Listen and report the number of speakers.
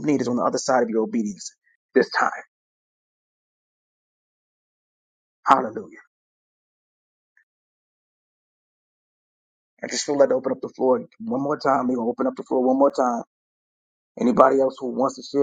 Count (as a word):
one